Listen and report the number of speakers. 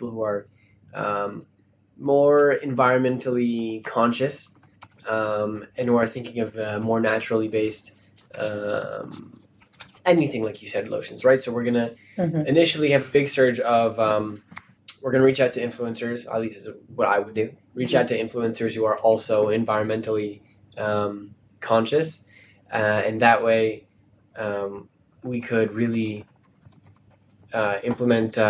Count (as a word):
one